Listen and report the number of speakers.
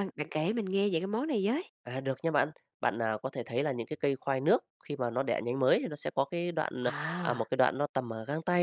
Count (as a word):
two